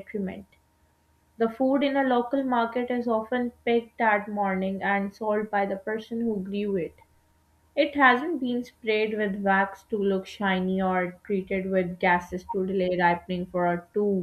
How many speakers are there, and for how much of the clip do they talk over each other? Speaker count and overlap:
one, no overlap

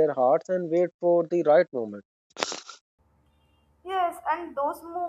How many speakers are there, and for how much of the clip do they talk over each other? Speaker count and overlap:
two, no overlap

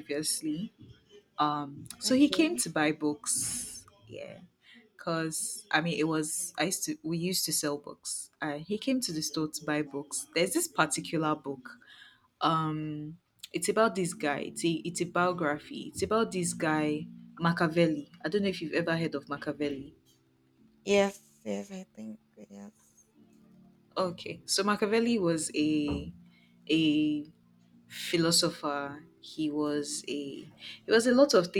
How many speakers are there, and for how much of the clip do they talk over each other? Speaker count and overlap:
two, about 2%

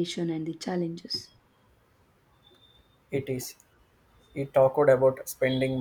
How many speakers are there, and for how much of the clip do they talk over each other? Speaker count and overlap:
two, no overlap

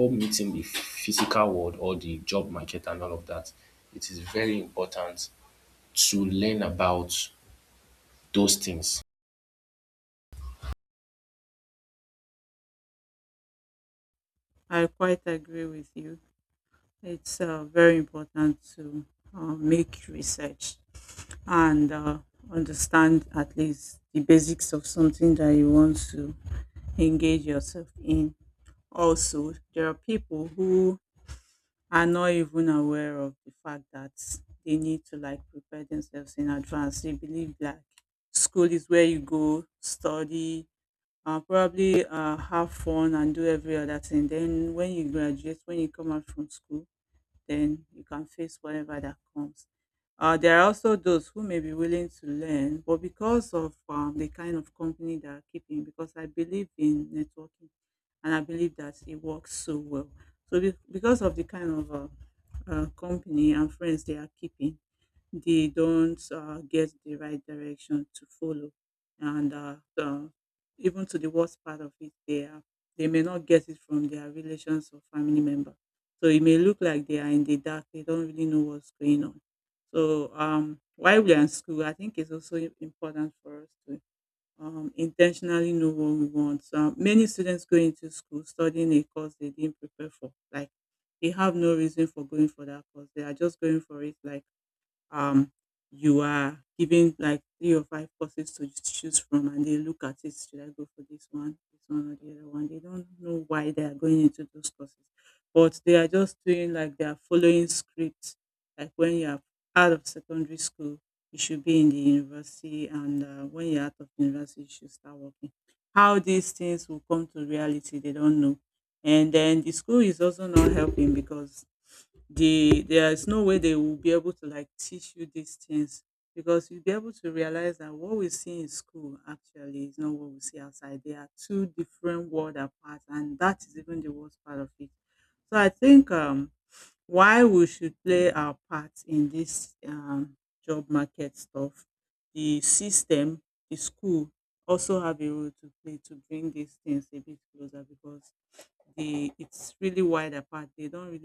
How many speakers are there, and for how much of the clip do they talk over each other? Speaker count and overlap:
two, no overlap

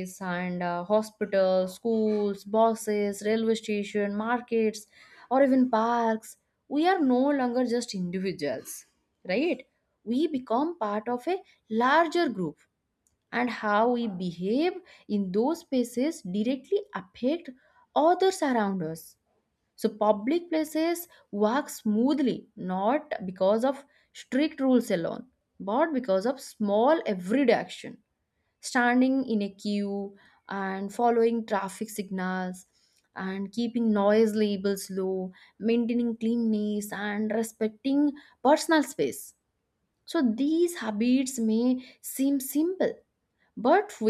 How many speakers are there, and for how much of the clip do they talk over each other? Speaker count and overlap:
one, no overlap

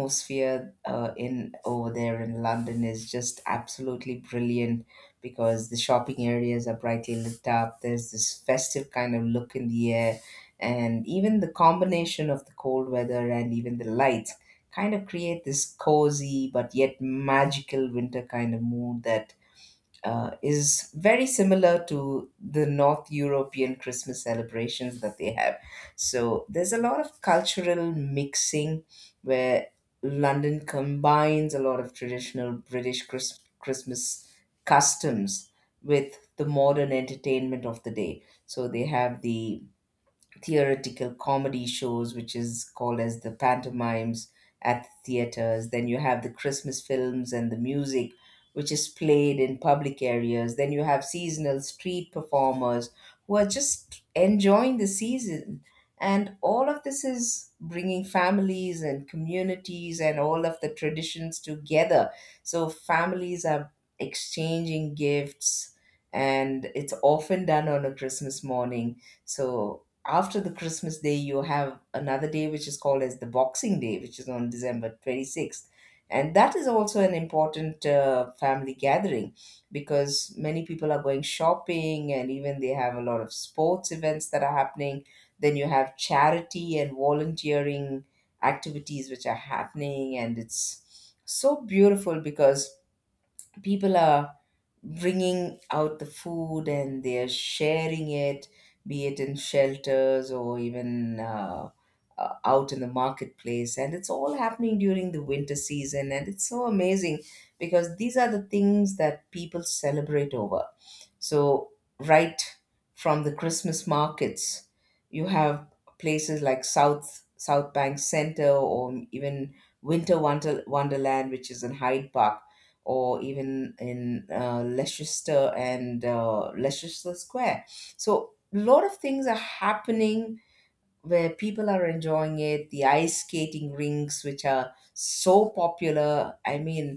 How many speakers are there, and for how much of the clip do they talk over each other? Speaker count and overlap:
one, no overlap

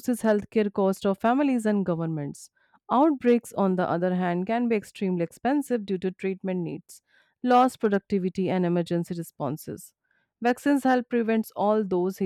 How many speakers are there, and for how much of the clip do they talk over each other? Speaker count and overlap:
one, no overlap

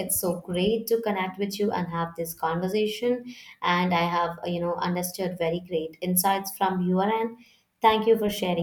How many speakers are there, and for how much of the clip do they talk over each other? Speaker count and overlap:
one, no overlap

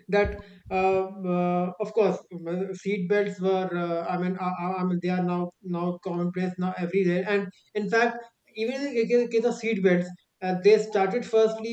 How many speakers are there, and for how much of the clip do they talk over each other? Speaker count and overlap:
one, no overlap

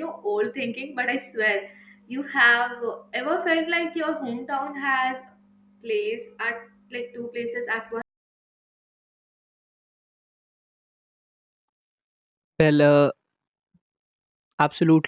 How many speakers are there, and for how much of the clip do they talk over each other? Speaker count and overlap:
two, no overlap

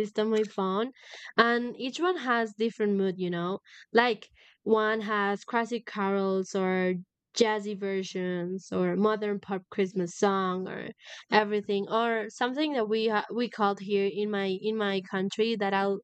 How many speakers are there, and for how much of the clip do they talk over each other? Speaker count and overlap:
one, no overlap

